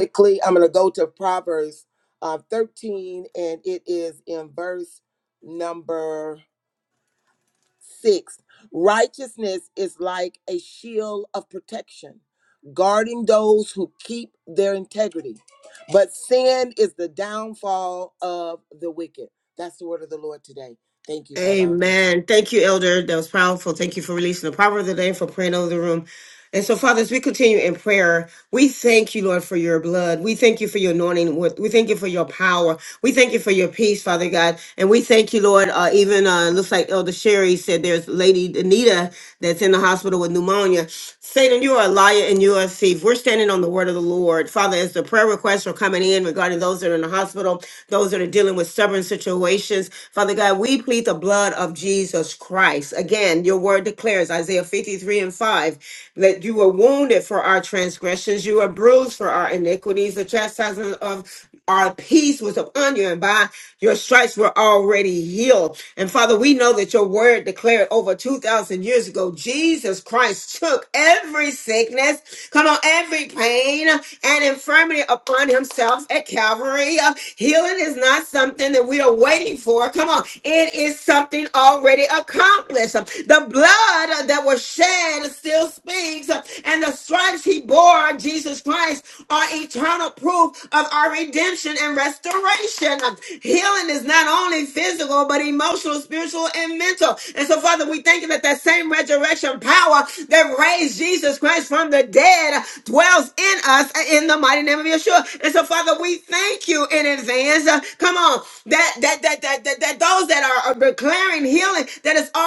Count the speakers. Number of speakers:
two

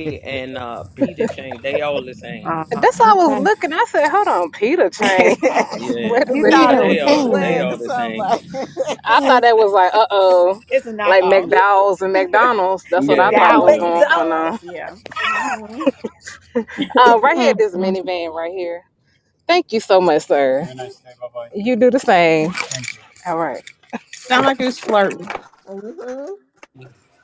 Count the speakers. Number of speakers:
five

